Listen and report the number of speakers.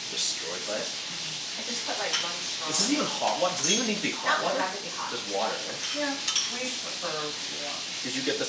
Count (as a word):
three